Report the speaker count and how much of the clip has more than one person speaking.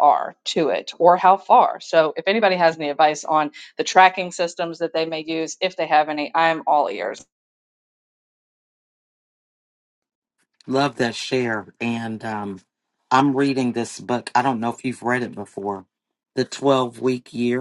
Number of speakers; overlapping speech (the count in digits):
2, no overlap